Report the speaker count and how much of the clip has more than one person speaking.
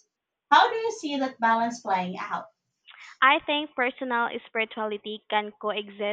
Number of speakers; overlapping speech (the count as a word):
two, no overlap